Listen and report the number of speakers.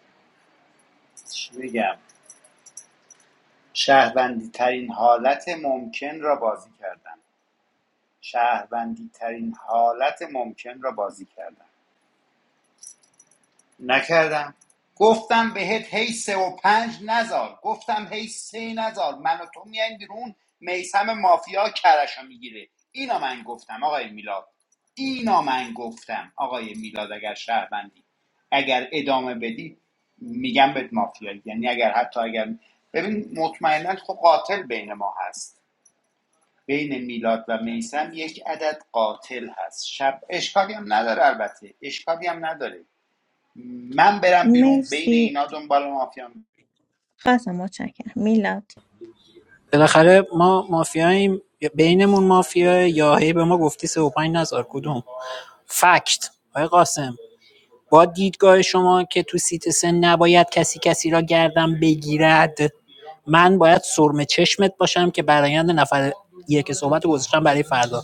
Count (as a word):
three